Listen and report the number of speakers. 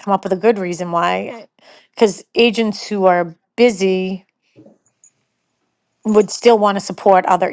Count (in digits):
1